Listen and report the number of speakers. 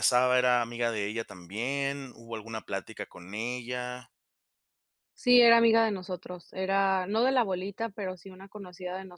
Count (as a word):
two